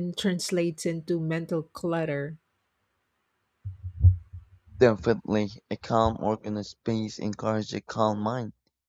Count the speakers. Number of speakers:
2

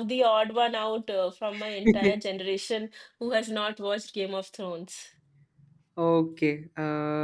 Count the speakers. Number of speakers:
2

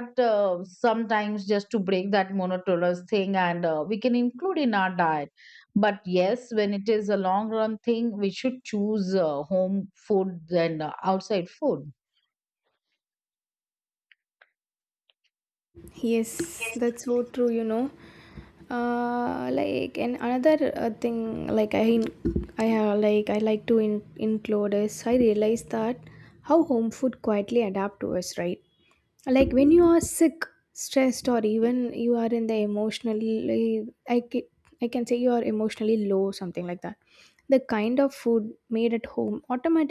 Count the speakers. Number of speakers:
2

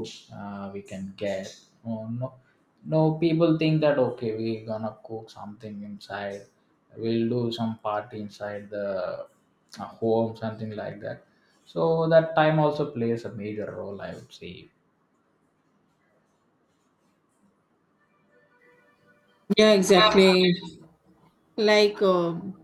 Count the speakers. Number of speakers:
2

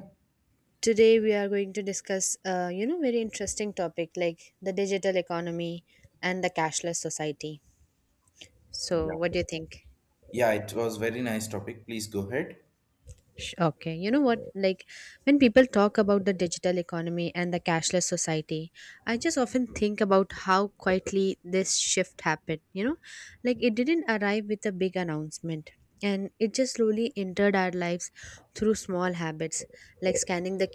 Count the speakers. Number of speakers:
2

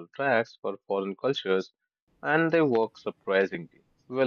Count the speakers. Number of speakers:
1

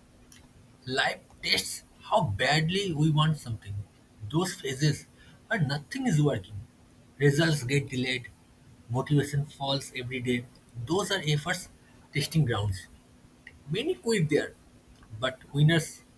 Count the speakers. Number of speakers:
1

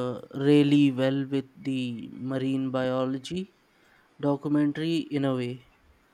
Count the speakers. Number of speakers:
1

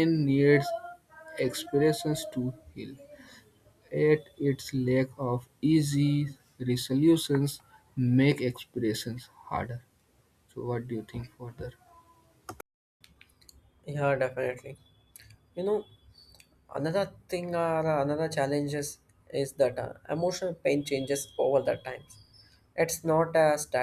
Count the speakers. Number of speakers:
2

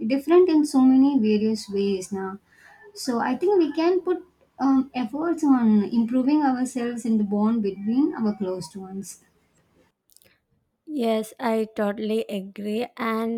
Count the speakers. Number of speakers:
2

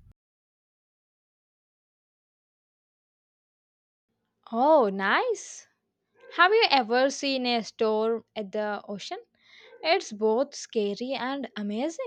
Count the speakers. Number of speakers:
1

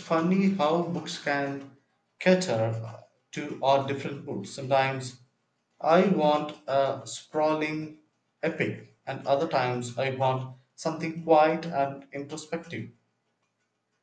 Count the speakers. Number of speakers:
1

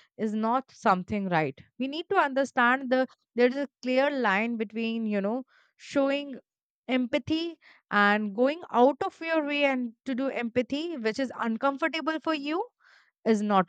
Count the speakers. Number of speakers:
1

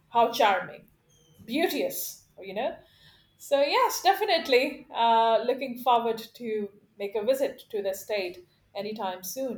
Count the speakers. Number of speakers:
1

